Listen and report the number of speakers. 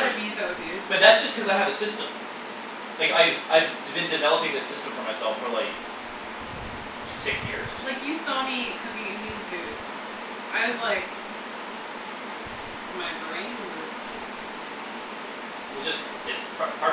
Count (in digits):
2